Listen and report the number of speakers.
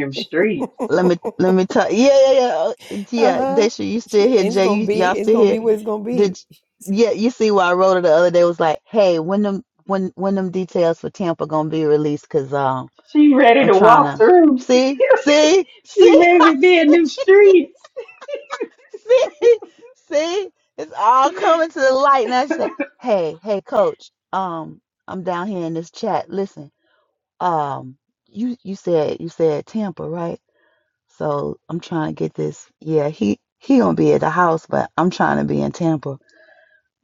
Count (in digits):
3